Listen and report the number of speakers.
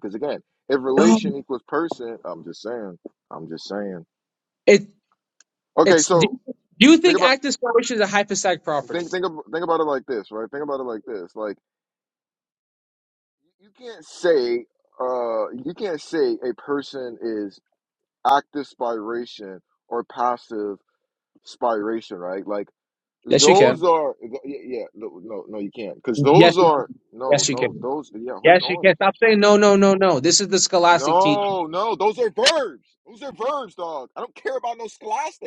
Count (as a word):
two